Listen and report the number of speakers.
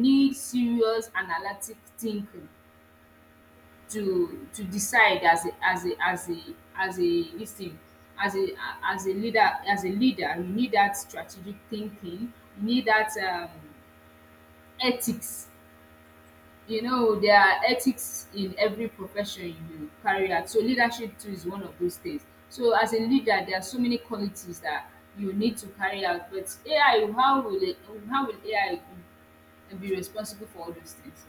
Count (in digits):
1